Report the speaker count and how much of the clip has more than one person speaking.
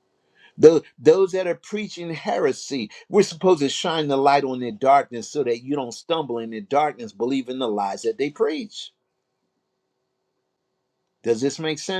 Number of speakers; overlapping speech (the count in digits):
1, no overlap